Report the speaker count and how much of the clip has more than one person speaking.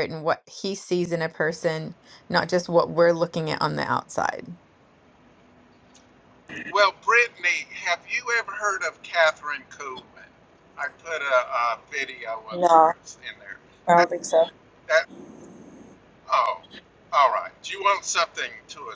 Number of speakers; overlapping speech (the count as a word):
three, about 2%